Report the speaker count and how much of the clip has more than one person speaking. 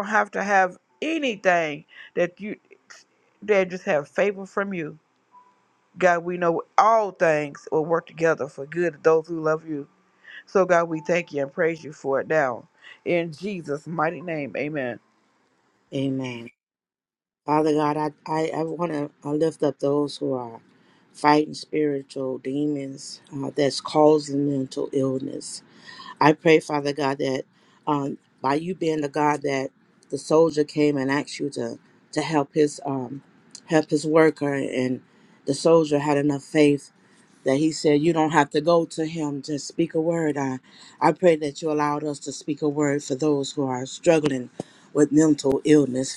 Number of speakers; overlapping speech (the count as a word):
two, no overlap